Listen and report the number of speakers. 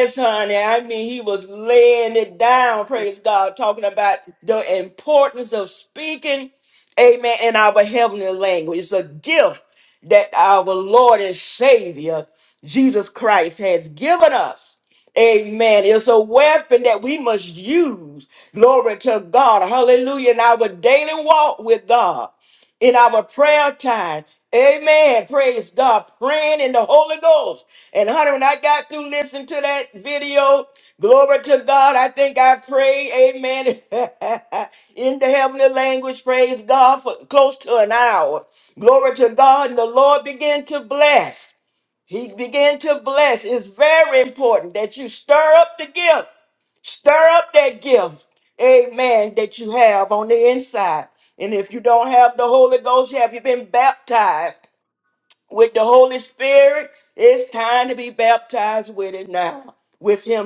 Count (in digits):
1